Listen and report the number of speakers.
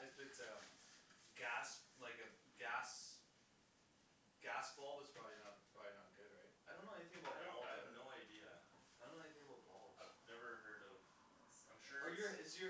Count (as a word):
two